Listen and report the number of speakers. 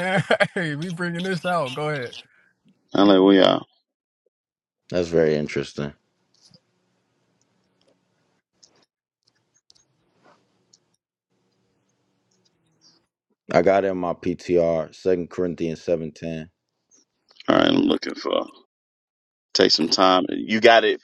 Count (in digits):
3